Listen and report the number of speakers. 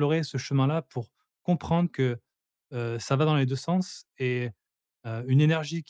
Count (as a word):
one